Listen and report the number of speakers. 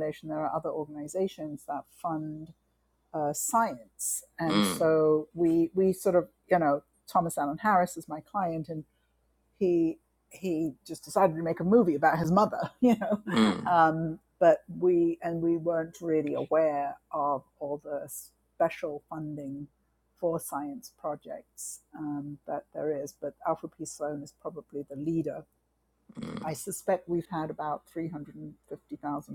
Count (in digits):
2